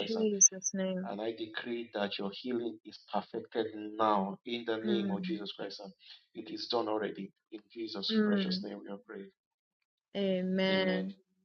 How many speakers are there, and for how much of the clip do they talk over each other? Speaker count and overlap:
2, about 14%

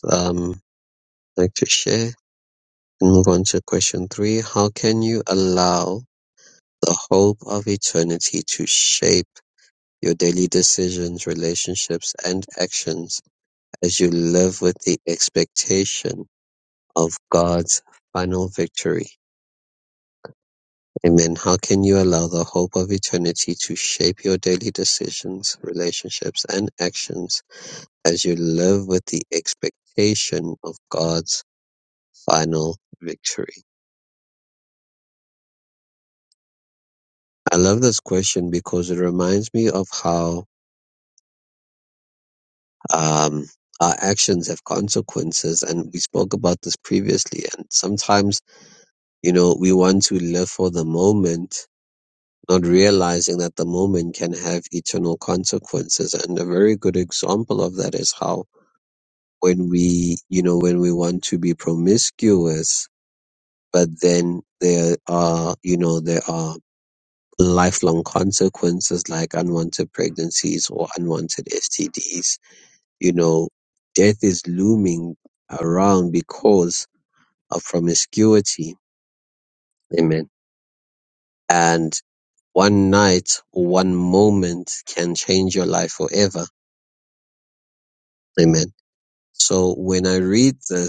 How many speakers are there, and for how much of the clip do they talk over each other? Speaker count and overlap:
1, no overlap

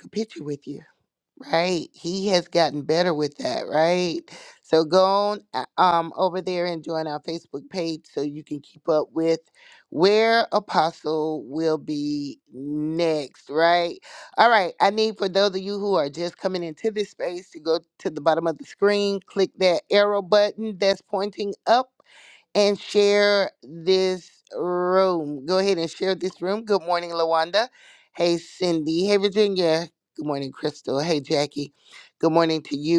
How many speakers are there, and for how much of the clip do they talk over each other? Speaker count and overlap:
1, no overlap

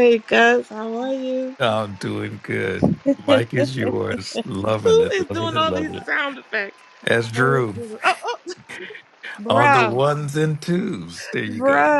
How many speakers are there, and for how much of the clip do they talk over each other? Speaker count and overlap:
2, about 20%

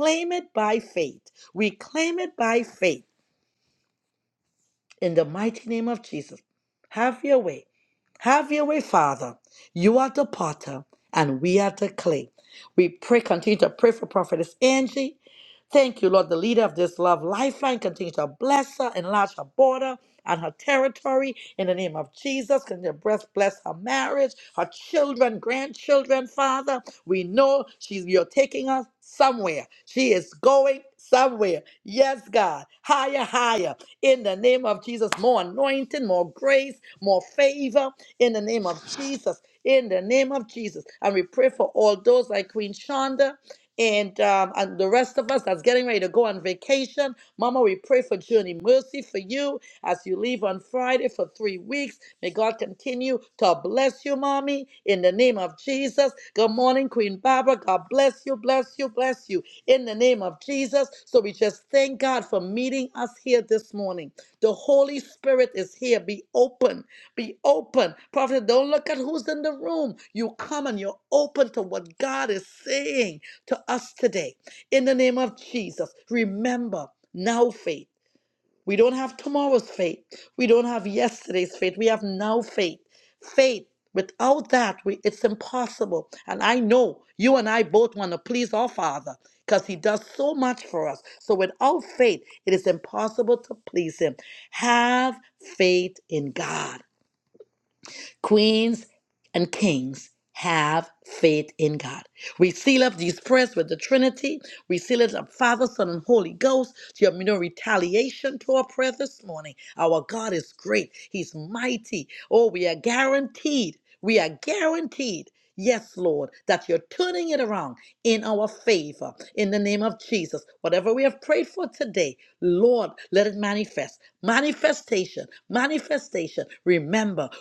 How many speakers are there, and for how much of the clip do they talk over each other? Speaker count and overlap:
1, no overlap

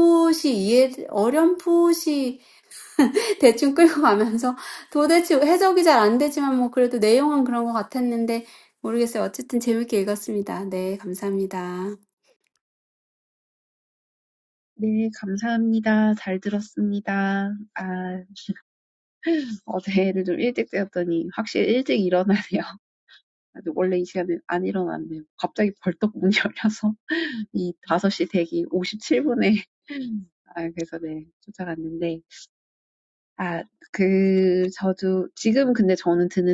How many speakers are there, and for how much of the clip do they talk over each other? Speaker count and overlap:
2, no overlap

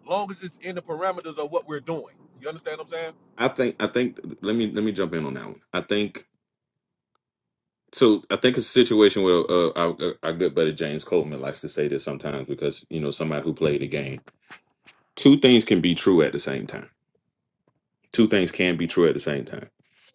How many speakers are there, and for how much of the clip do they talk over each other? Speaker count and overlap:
2, no overlap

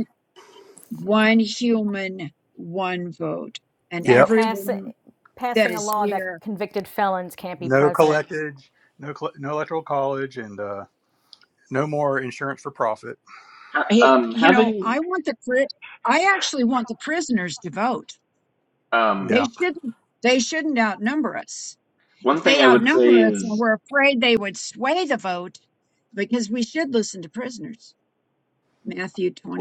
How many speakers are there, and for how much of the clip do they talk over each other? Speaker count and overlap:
4, about 16%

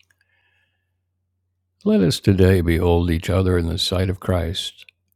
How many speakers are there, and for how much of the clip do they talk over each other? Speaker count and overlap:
1, no overlap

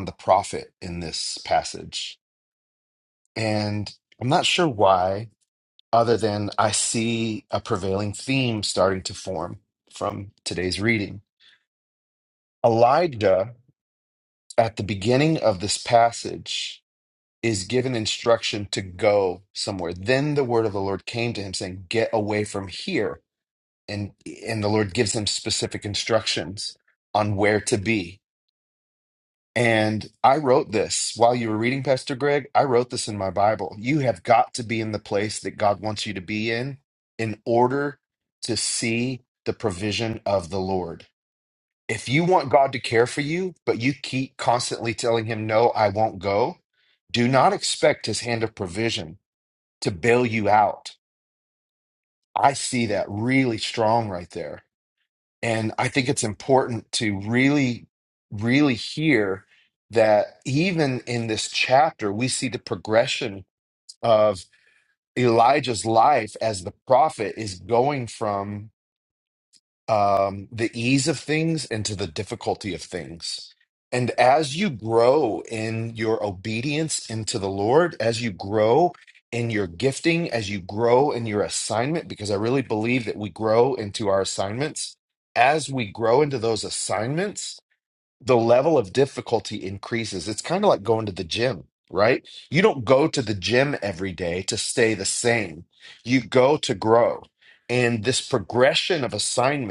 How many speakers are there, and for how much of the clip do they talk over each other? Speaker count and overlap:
1, no overlap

